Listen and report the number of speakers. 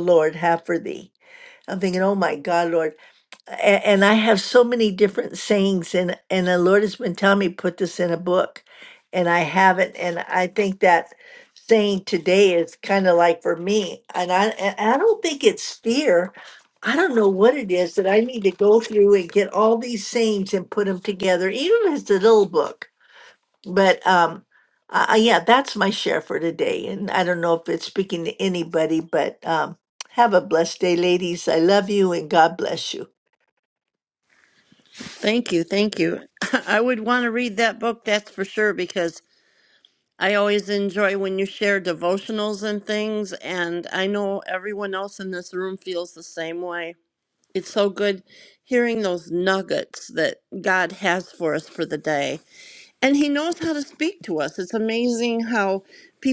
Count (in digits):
2